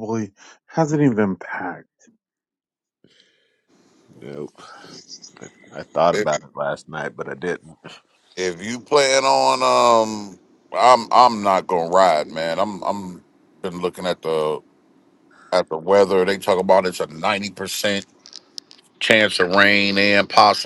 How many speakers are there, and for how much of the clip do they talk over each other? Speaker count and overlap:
three, about 1%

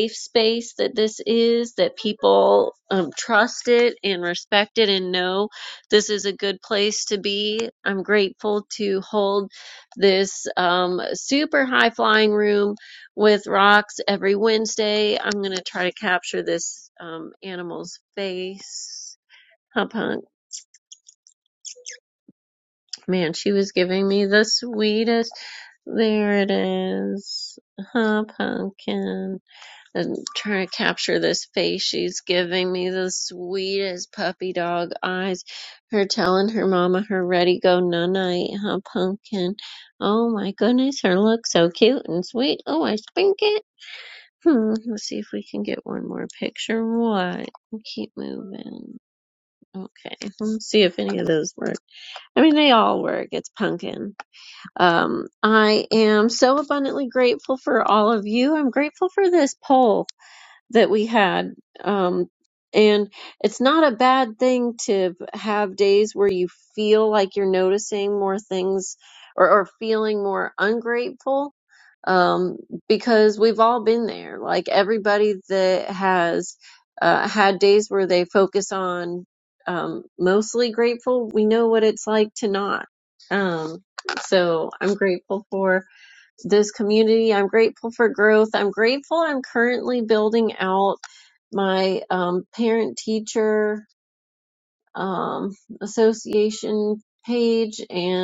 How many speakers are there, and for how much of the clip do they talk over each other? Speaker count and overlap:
one, no overlap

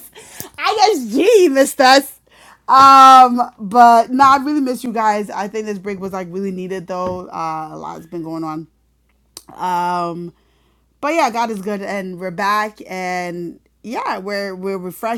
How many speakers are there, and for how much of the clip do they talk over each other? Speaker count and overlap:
one, no overlap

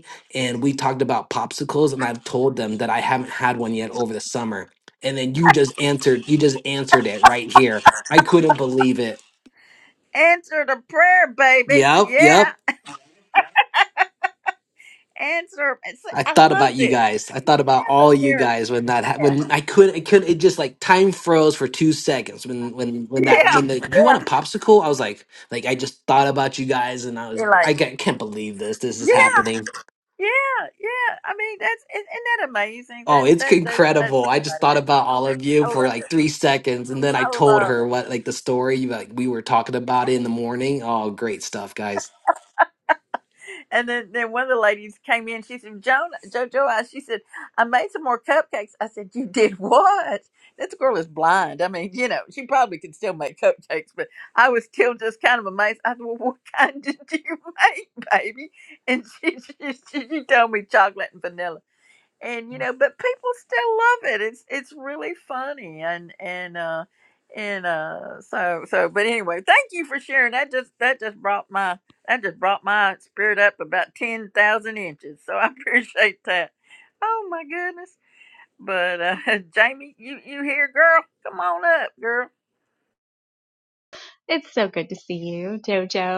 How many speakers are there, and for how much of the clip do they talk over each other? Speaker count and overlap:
three, about 8%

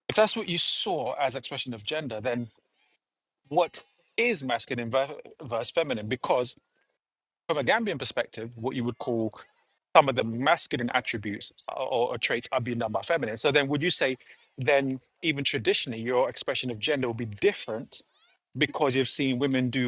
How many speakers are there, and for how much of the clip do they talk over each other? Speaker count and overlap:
one, no overlap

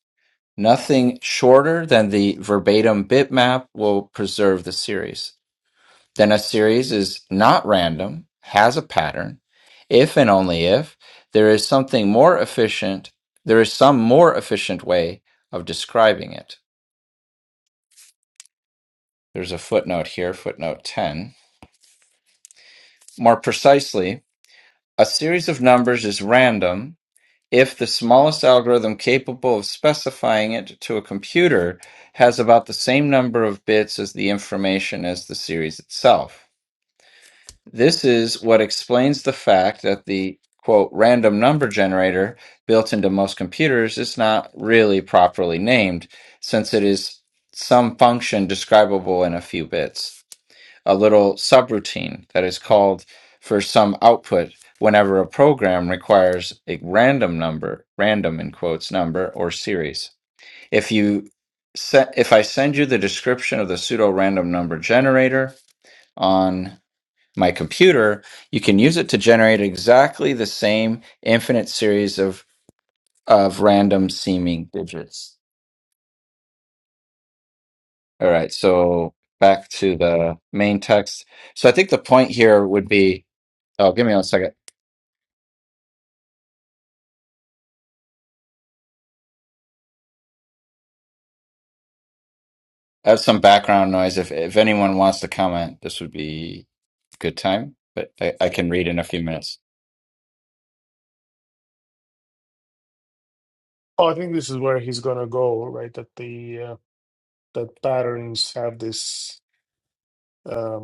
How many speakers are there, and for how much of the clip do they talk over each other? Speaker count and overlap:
two, no overlap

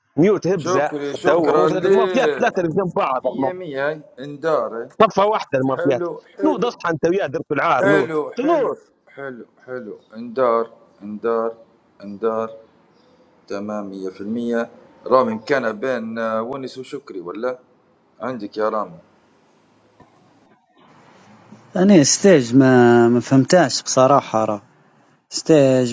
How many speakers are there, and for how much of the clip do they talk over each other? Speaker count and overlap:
three, about 14%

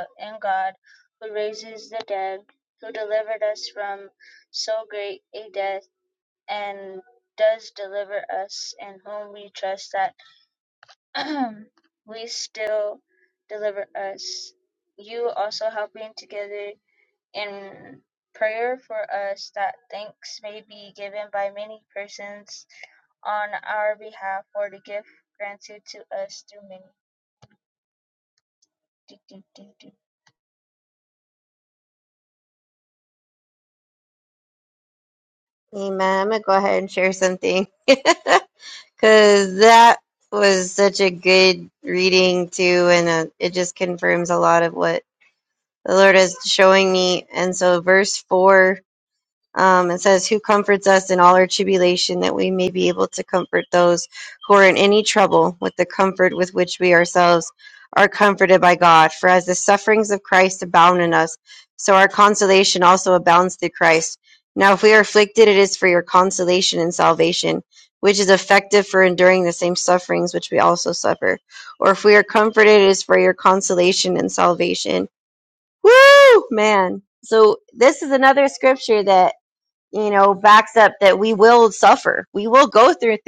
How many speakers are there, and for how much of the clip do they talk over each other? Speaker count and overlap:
two, no overlap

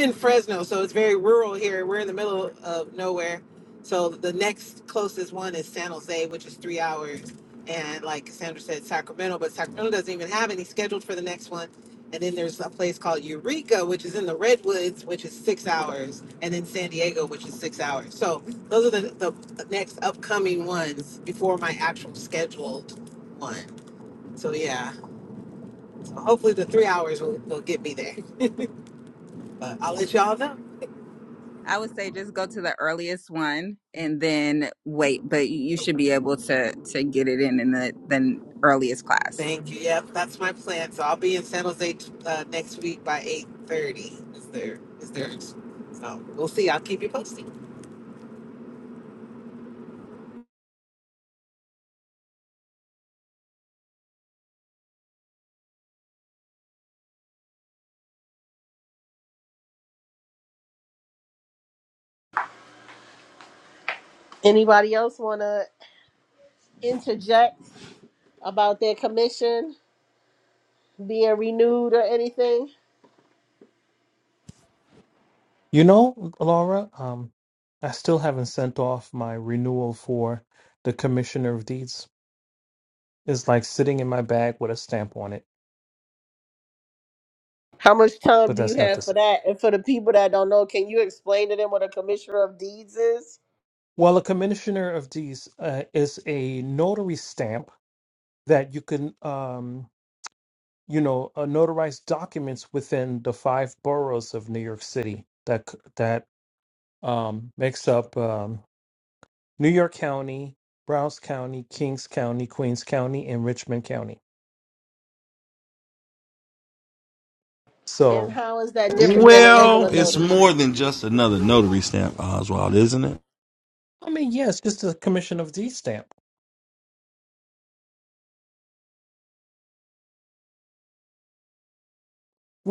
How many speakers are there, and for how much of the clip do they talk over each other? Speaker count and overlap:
five, about 2%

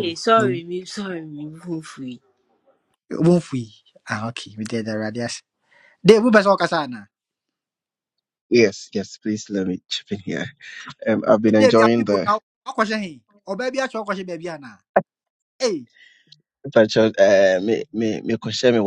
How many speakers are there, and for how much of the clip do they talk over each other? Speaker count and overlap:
three, about 7%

